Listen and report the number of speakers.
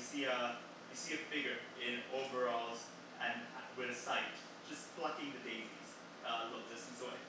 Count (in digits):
1